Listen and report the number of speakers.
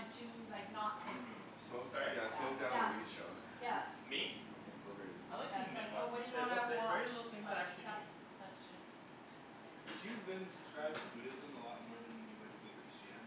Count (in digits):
4